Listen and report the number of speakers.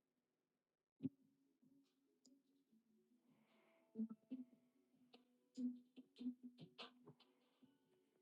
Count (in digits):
0